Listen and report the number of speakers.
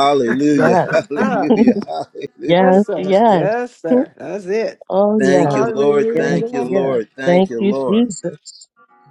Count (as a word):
three